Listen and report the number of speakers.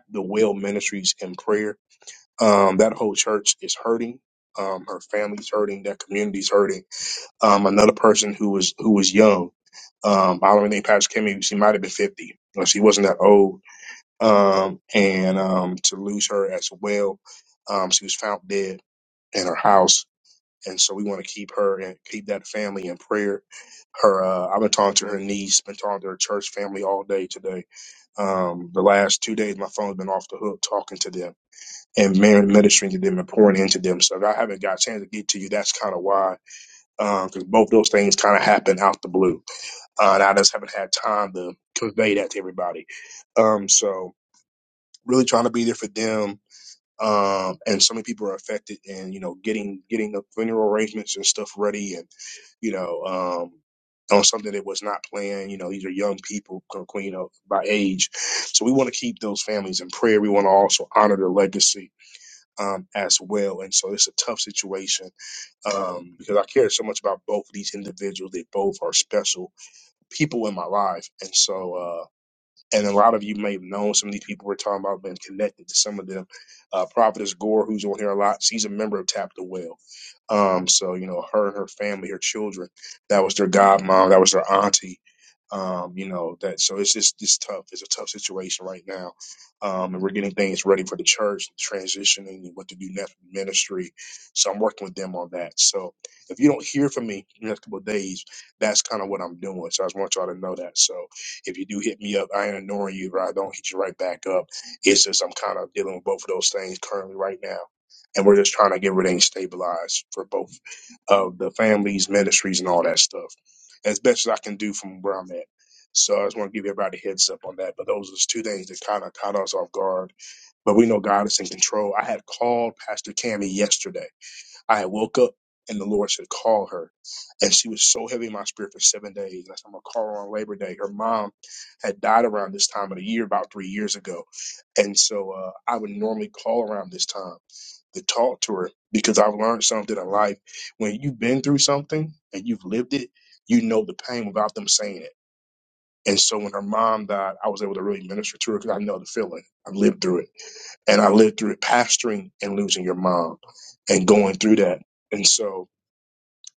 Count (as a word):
one